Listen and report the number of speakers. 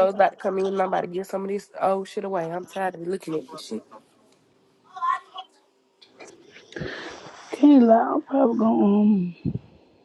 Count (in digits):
2